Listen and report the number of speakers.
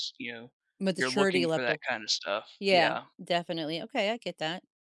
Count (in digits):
2